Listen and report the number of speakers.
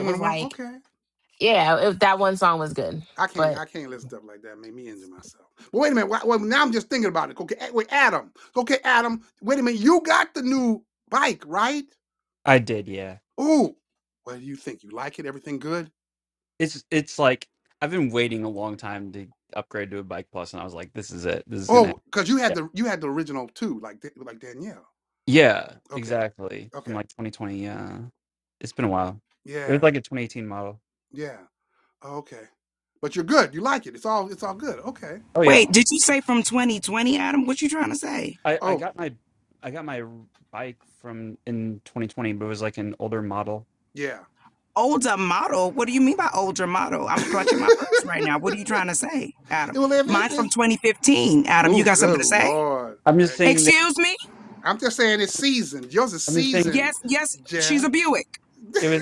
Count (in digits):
4